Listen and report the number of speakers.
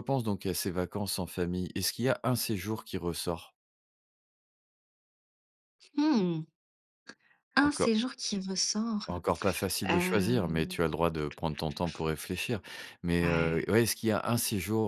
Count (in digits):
2